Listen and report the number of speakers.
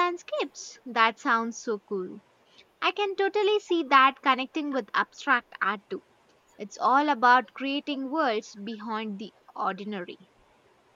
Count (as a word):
one